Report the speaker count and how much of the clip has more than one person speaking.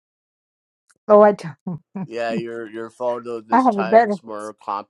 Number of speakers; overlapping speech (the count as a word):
two, about 13%